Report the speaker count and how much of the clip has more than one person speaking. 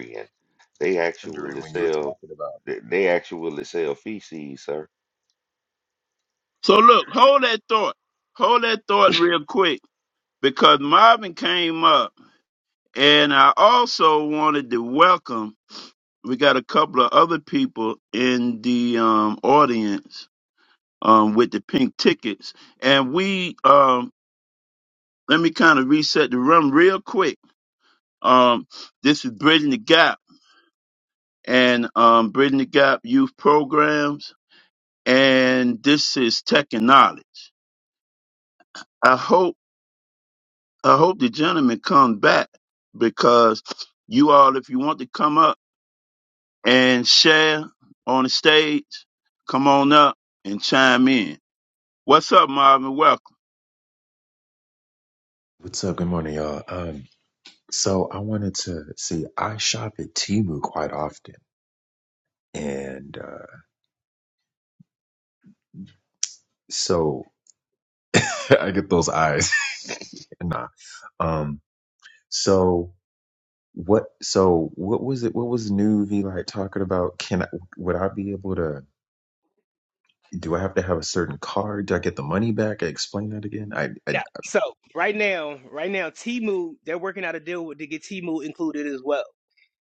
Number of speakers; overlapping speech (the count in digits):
4, about 1%